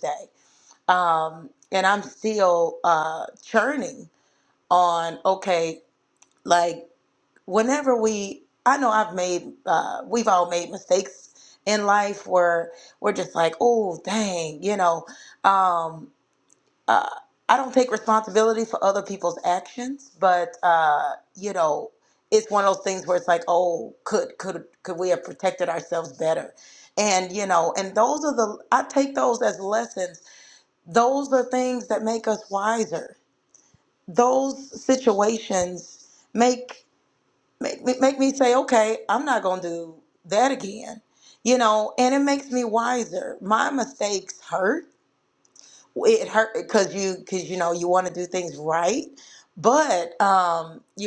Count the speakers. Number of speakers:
one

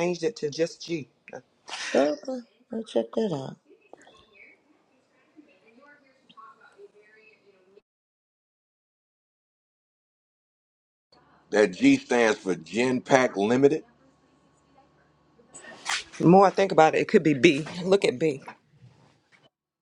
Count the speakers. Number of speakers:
three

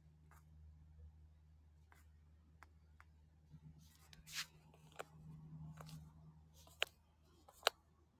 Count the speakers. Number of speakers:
zero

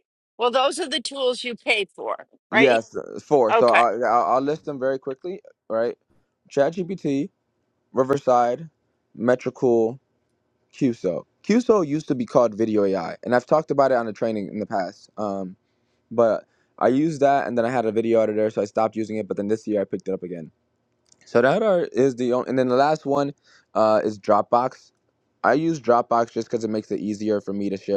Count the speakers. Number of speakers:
two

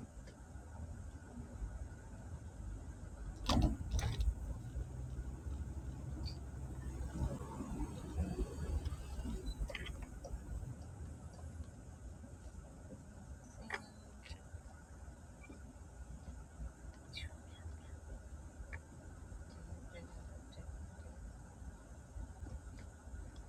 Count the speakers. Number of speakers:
zero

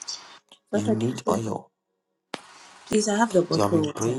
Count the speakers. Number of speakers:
two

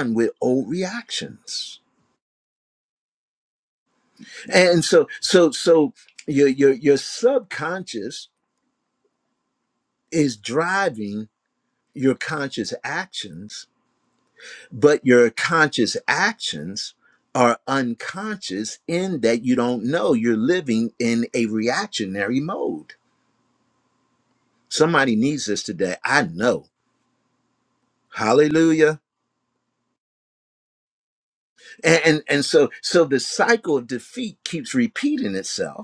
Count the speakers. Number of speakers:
one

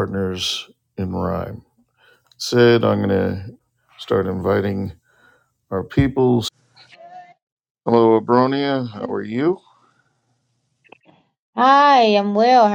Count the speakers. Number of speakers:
two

